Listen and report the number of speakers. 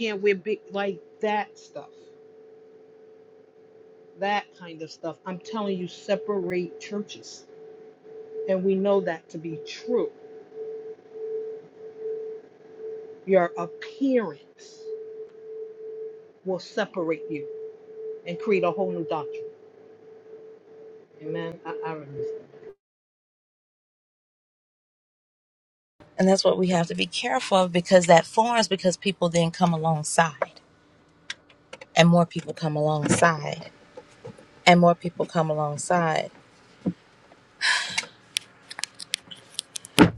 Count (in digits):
2